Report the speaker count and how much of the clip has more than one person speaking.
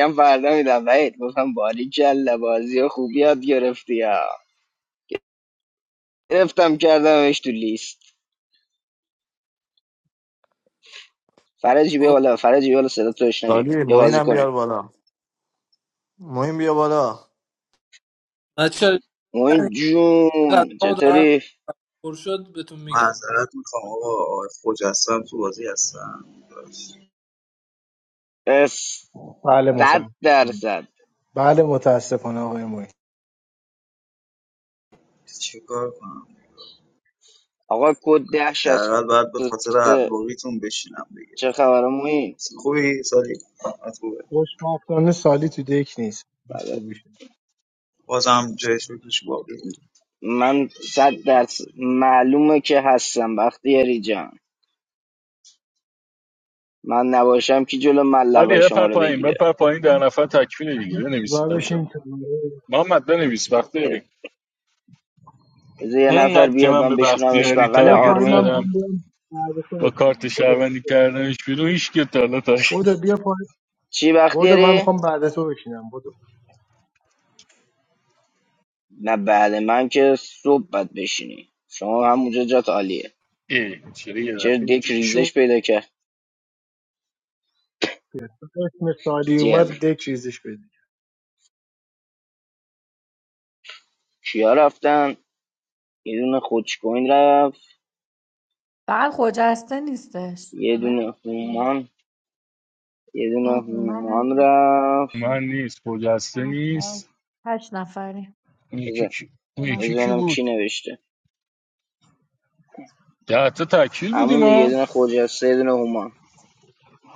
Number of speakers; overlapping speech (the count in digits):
7, about 11%